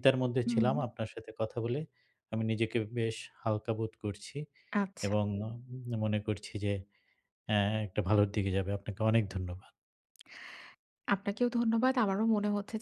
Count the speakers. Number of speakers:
two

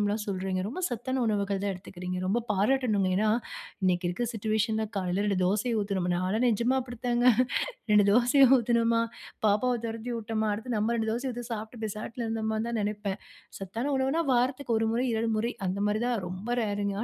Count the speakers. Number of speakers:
one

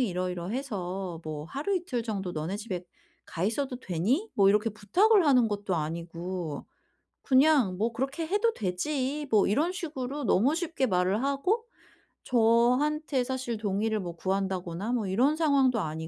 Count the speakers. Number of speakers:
one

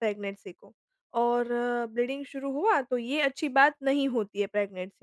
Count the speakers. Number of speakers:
one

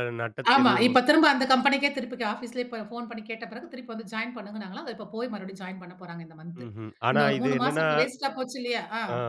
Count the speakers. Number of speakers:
two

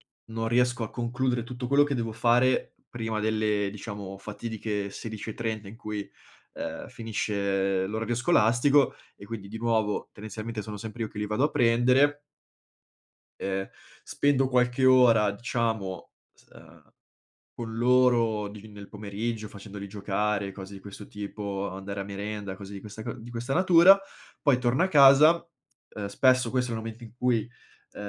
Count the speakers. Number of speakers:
one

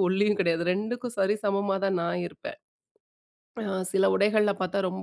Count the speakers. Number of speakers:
one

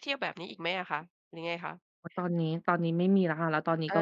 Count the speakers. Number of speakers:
two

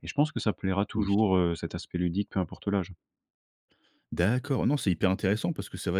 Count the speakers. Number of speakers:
two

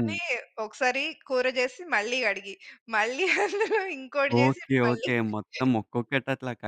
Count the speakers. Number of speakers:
two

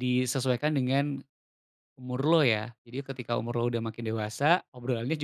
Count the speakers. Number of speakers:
one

